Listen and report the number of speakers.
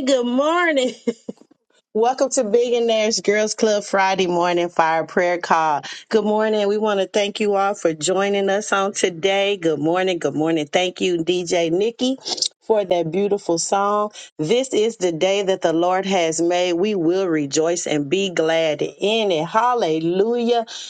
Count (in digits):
1